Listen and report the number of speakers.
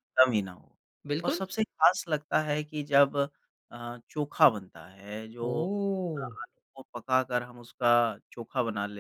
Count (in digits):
2